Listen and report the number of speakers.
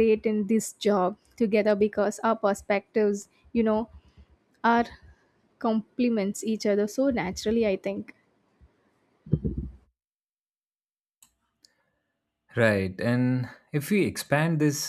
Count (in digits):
2